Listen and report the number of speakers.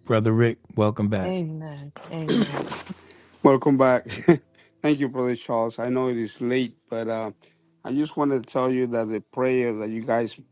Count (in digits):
3